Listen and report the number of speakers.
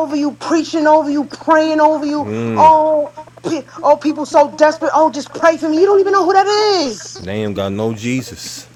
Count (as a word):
two